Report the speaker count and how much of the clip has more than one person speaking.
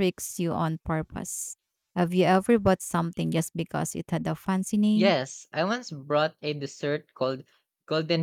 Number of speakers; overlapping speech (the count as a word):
two, about 2%